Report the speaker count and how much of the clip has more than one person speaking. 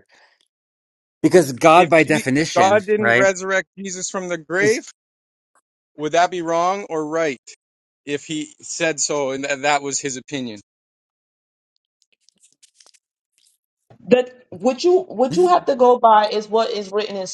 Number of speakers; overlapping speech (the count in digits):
3, about 9%